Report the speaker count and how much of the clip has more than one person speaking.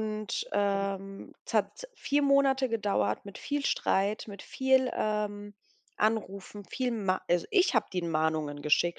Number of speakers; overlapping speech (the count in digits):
1, no overlap